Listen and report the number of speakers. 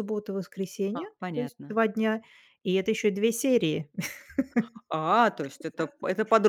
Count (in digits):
2